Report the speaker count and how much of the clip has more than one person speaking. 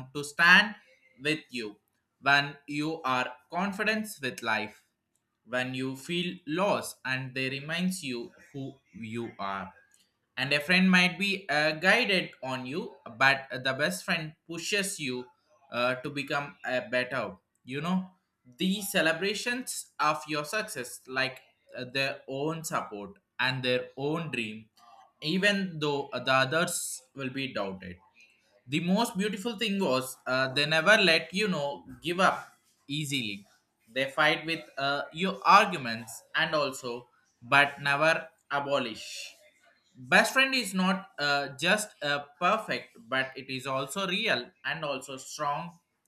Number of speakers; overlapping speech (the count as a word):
one, no overlap